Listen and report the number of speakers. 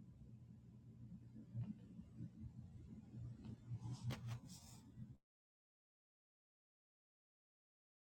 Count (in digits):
0